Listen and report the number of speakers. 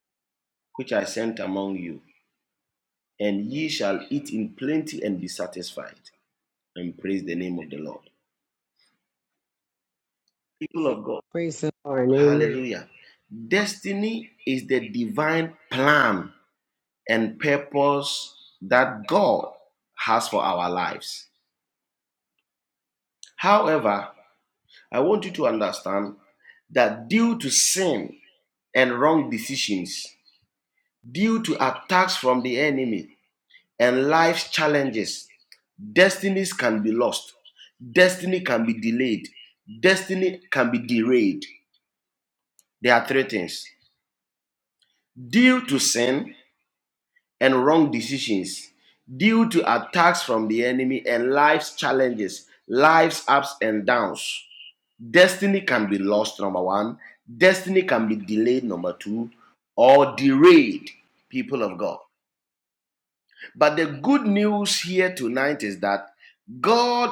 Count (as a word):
two